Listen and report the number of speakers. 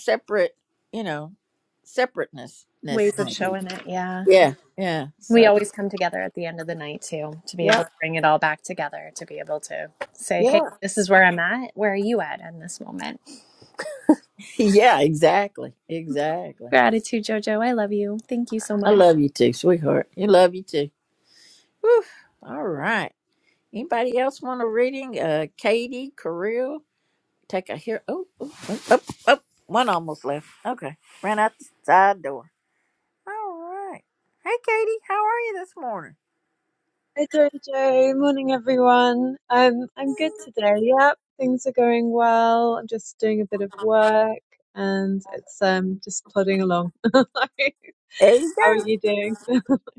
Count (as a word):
three